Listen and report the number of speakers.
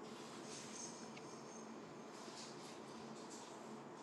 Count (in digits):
0